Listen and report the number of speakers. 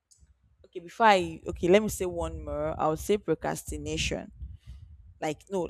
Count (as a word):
one